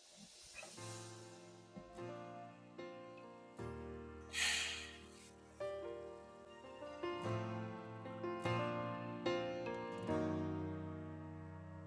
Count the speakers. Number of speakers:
0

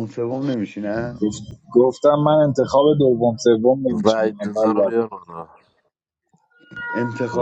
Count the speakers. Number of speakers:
3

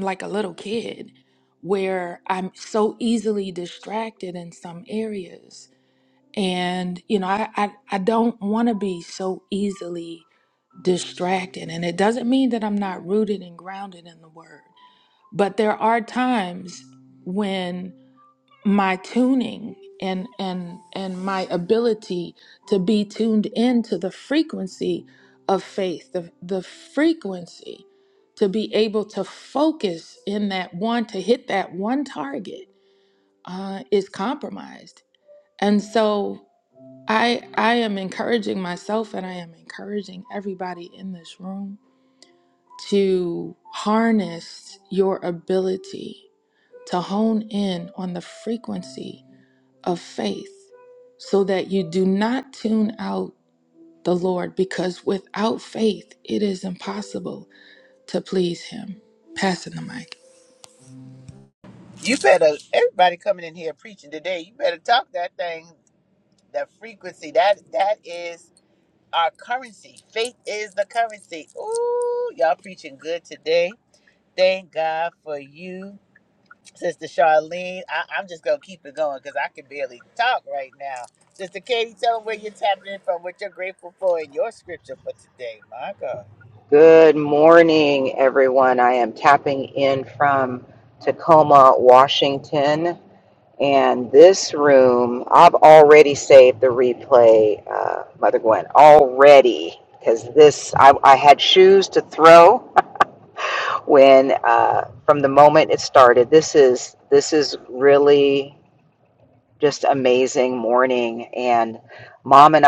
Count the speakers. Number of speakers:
3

